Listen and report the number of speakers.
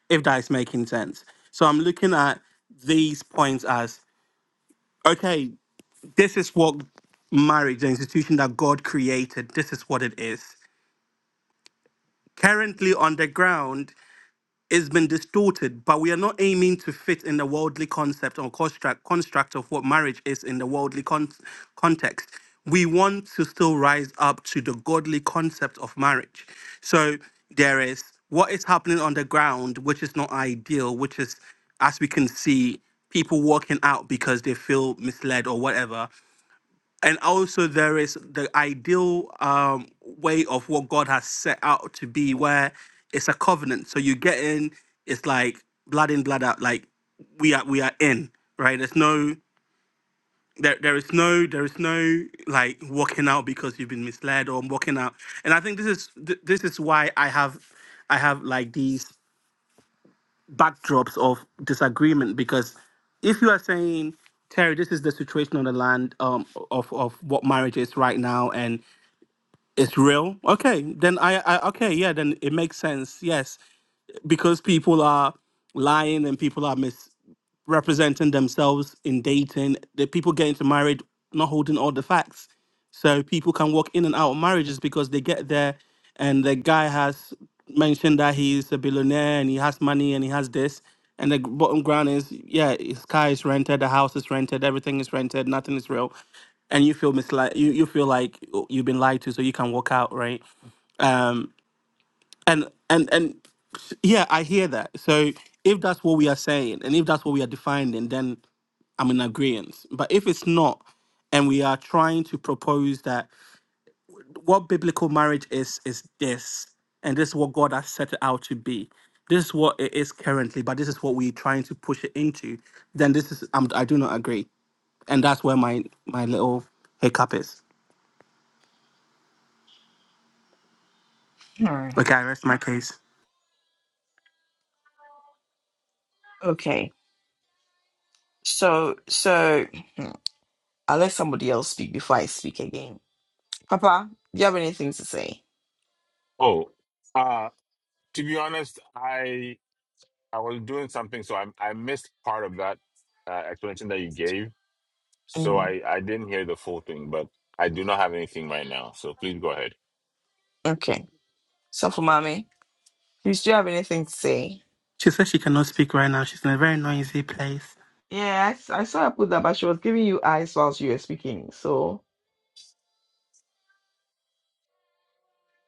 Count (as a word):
three